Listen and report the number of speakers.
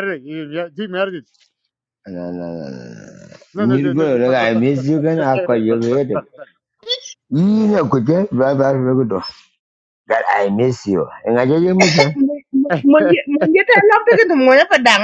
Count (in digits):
3